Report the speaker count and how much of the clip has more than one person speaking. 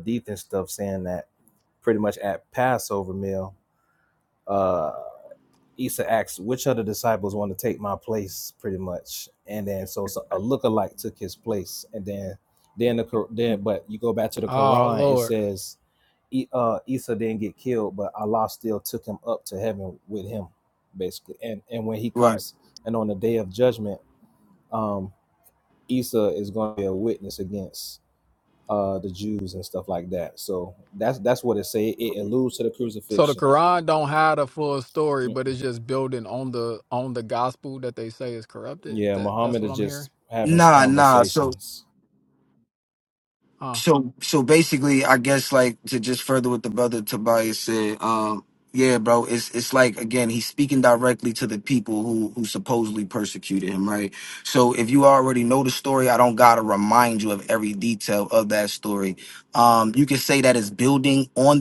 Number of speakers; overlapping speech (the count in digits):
3, about 6%